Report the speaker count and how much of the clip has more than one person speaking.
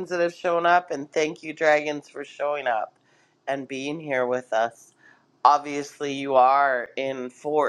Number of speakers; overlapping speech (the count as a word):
one, no overlap